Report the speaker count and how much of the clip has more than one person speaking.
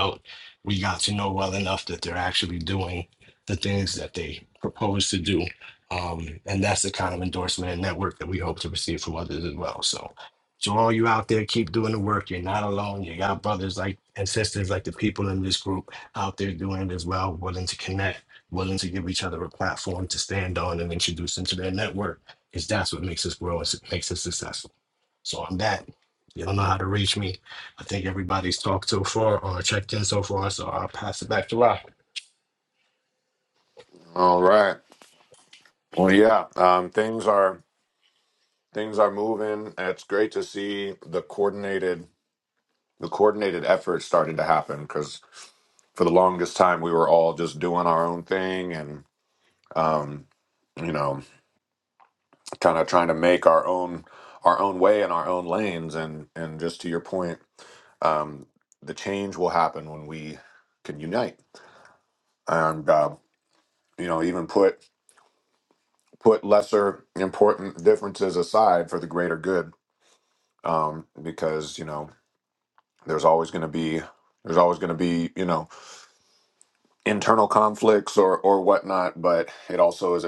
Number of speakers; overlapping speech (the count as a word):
two, no overlap